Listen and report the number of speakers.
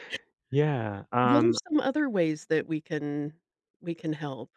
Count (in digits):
2